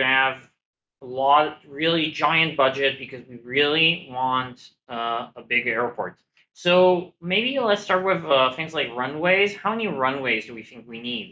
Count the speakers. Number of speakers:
1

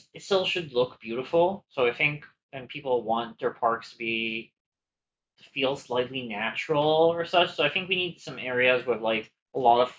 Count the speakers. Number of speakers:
1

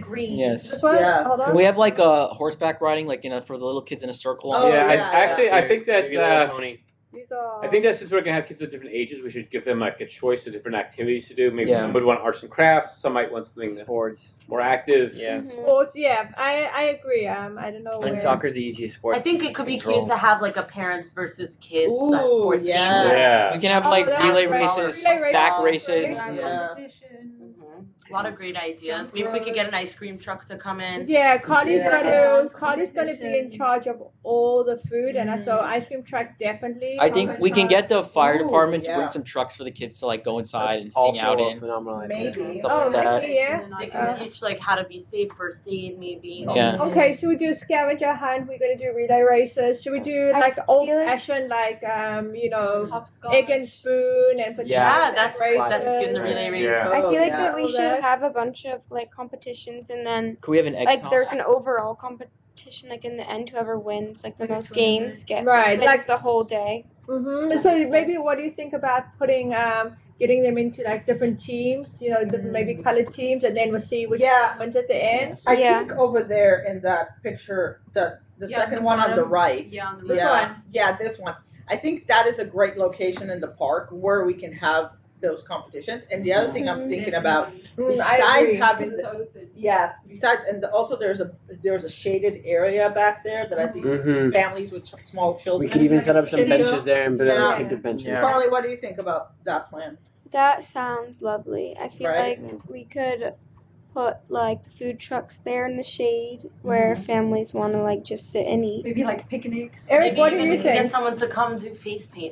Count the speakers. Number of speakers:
8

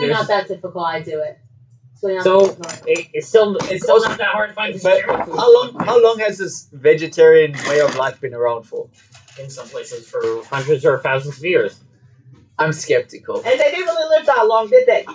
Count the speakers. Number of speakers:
4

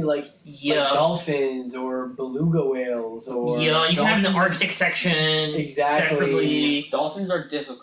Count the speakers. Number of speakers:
3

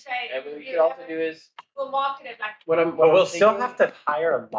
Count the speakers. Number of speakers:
3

